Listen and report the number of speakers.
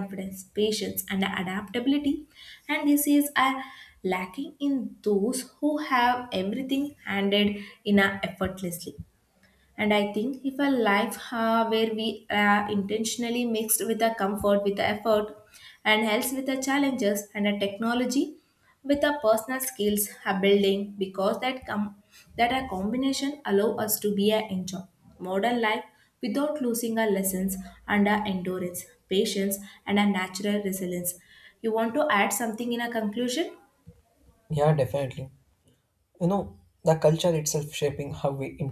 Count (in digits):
2